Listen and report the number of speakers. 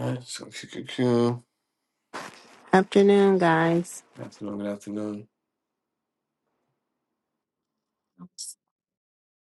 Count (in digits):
2